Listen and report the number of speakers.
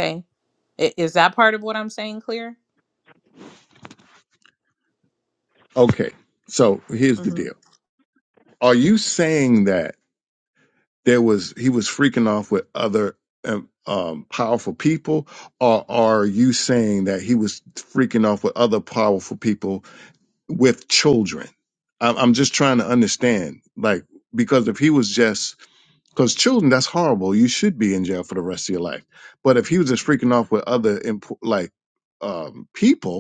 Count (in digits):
2